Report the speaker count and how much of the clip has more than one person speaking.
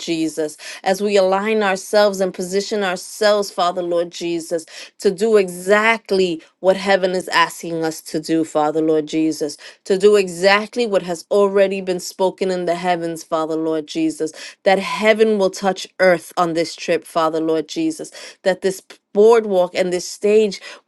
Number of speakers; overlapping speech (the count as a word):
one, no overlap